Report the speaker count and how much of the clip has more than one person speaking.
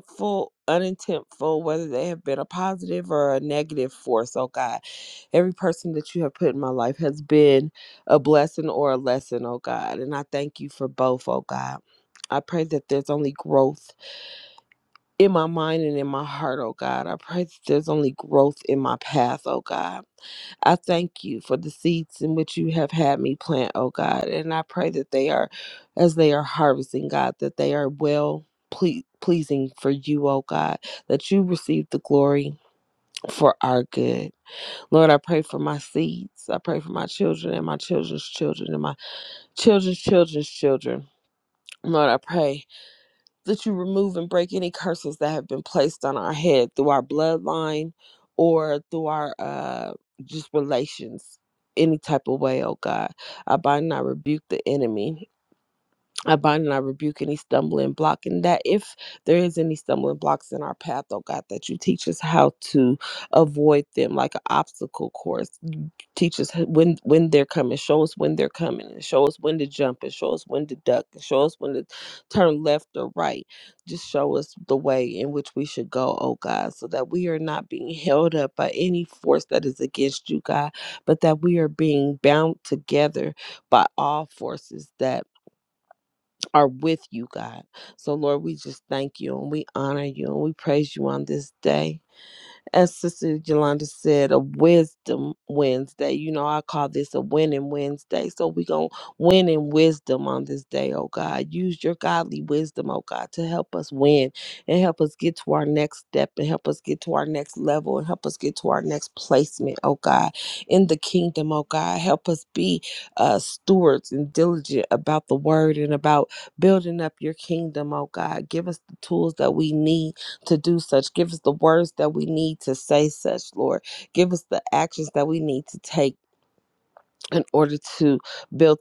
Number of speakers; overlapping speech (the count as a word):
one, no overlap